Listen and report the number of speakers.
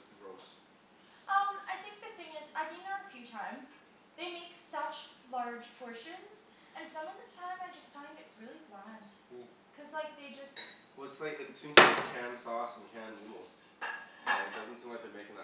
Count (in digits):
2